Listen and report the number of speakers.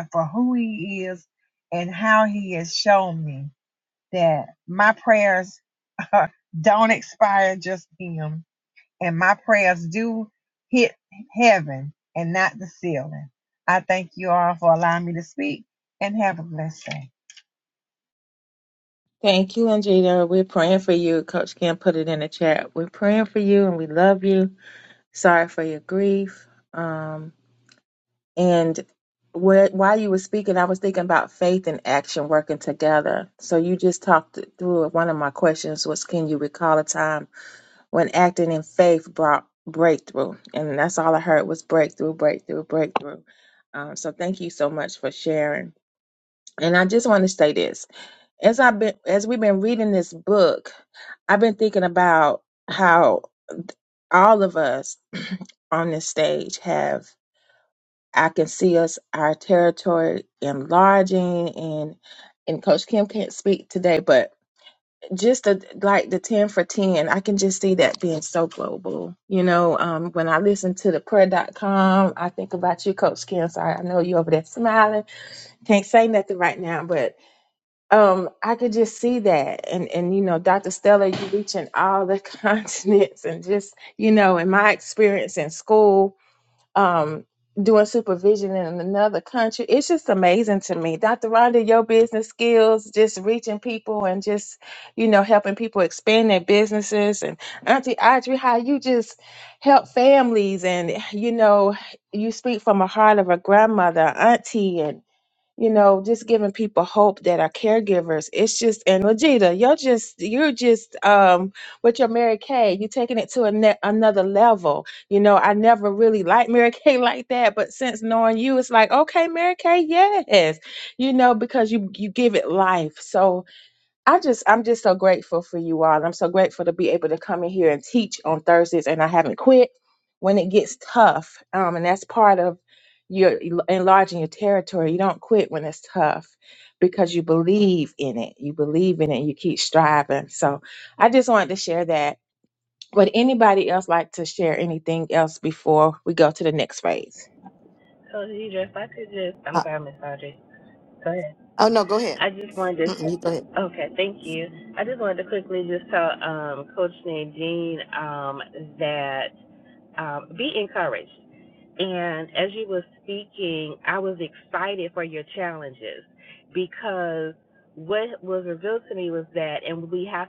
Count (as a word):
four